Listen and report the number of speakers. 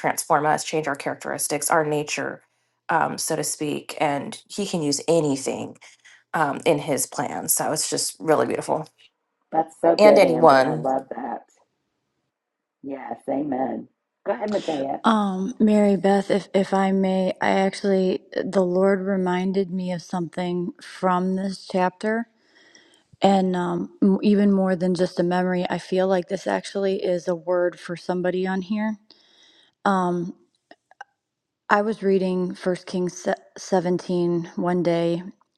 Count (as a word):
three